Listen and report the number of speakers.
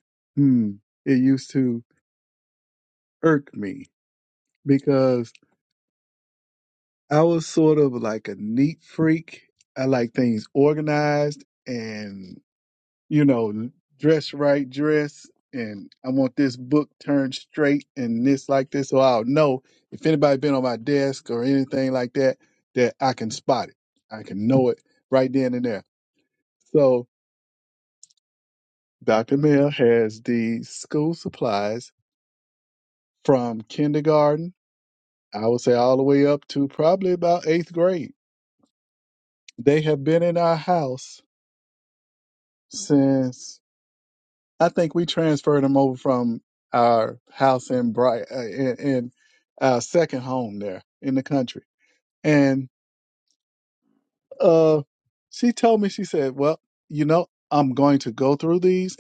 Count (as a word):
one